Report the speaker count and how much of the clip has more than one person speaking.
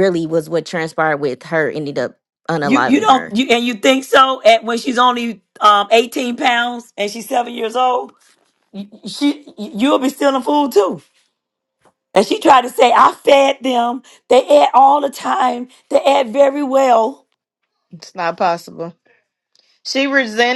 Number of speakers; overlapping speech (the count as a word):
three, about 3%